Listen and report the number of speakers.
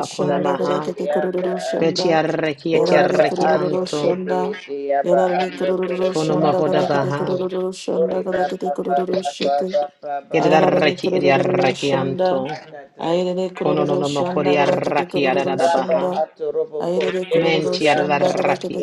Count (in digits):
3